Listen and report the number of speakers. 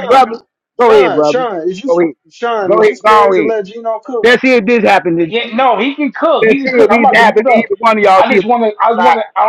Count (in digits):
3